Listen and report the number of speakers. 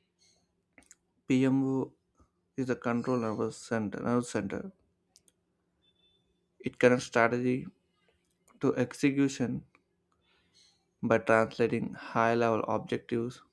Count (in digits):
1